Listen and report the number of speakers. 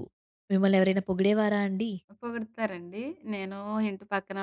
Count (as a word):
two